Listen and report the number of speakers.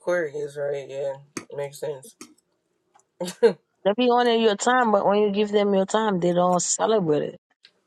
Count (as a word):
two